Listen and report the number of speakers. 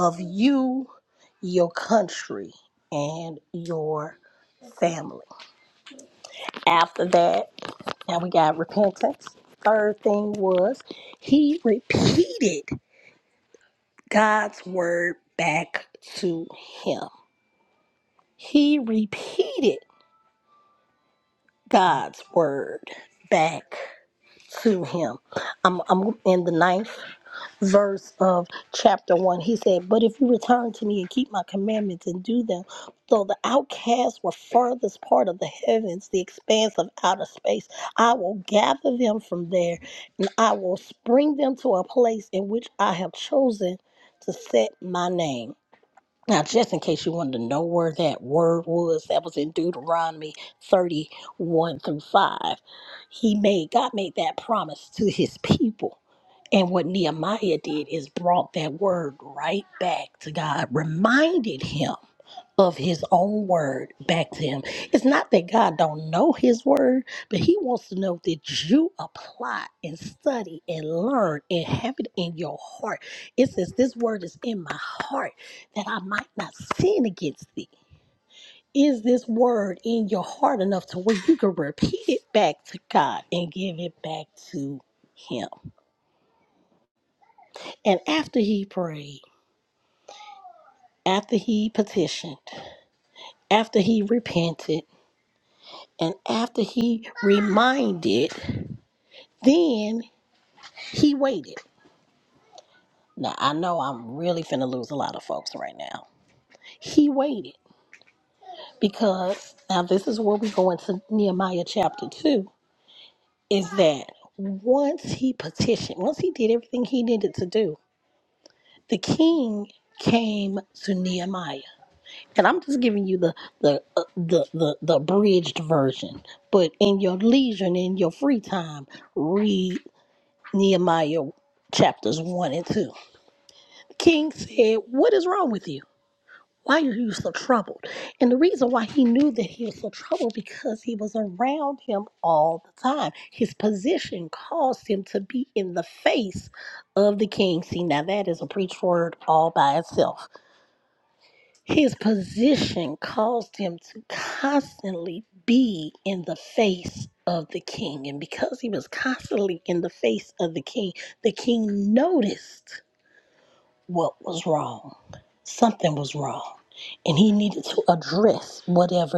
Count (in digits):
1